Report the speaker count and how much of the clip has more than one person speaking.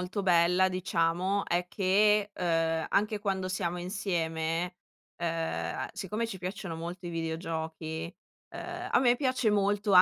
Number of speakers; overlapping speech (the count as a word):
one, no overlap